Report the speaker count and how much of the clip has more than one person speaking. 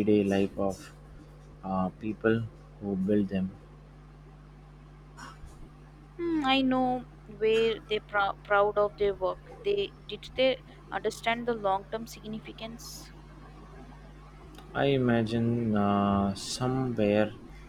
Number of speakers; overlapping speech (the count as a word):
two, no overlap